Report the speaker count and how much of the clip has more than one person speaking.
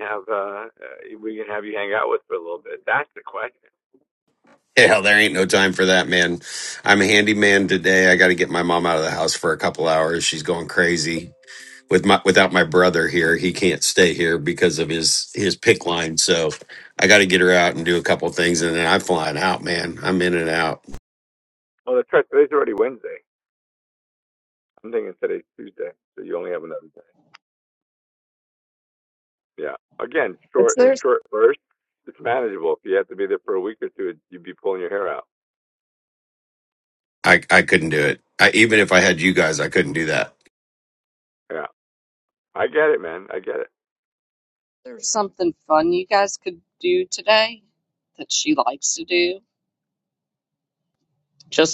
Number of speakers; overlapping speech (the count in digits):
3, about 1%